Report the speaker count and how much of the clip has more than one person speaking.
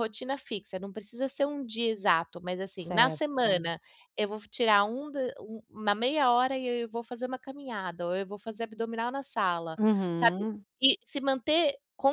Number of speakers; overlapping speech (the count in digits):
2, about 4%